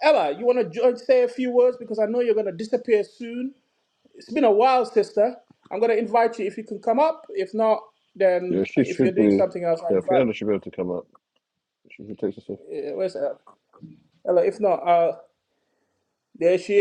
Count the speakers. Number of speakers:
two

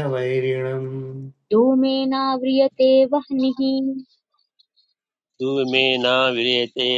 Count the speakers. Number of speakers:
three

